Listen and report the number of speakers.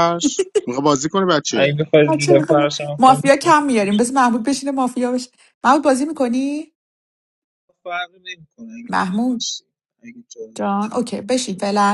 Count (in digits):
3